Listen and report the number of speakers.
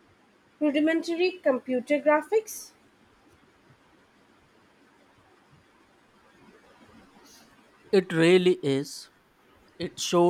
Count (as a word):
two